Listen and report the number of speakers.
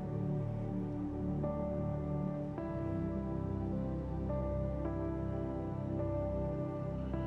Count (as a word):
zero